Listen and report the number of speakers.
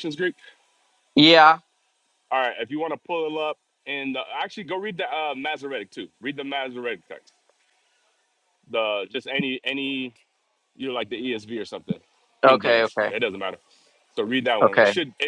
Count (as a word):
two